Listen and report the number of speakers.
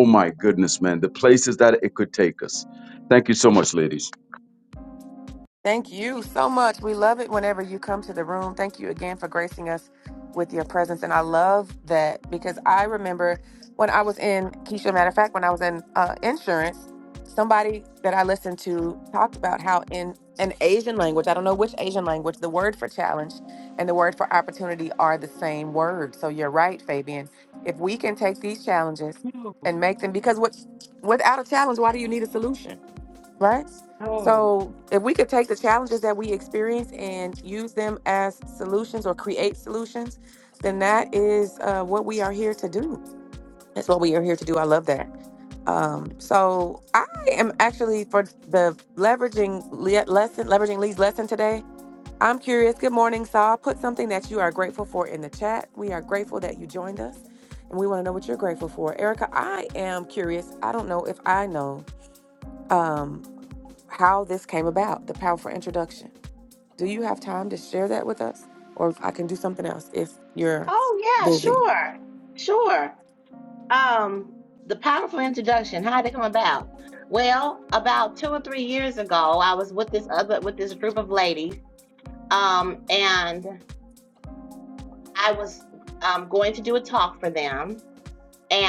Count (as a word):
three